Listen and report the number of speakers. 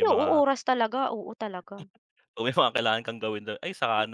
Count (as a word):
two